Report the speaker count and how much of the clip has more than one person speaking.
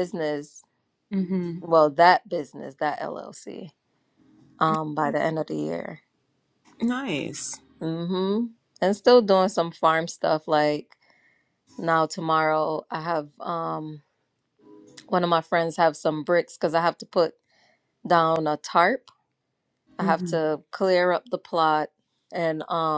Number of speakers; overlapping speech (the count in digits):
2, about 2%